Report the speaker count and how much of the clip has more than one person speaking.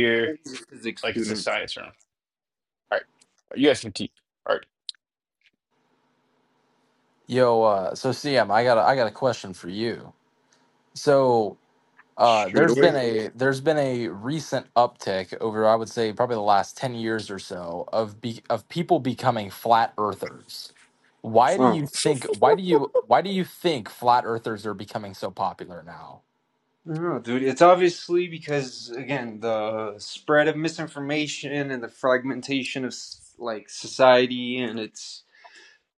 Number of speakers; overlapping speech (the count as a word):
three, about 4%